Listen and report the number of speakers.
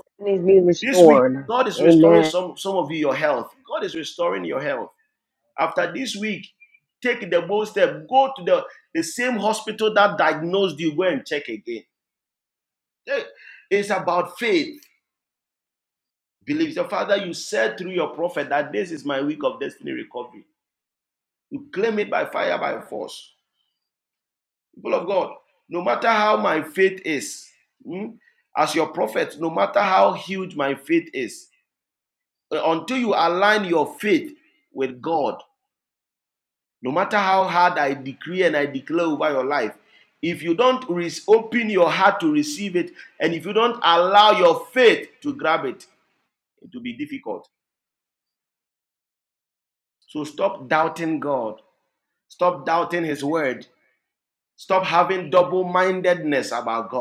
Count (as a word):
two